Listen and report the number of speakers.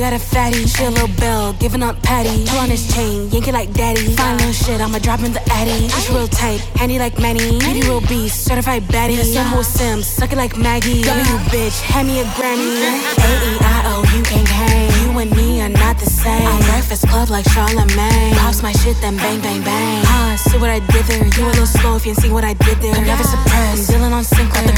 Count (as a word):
one